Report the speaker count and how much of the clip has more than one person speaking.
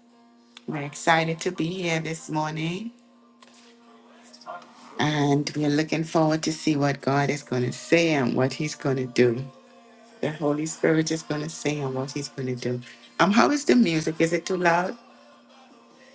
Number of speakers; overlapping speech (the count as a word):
one, no overlap